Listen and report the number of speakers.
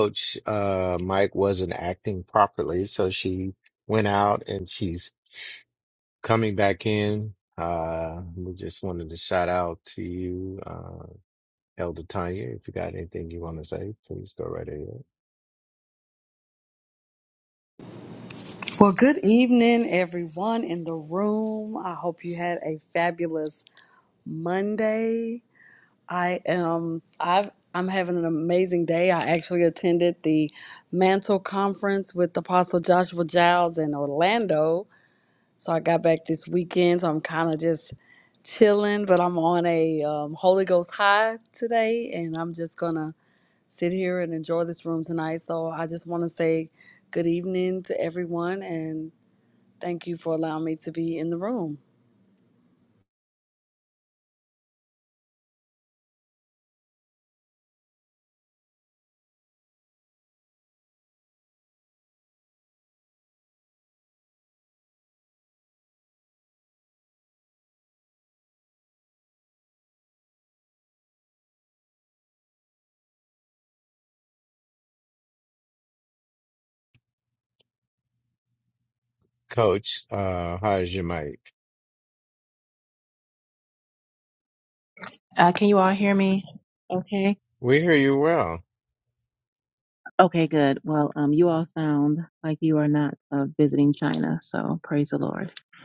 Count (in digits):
3